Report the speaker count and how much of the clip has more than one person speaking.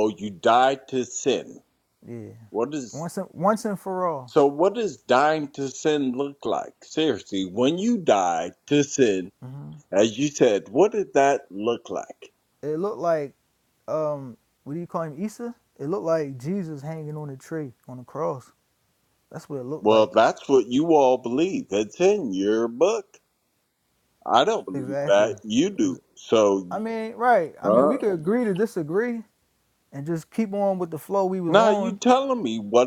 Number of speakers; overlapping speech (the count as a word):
two, about 5%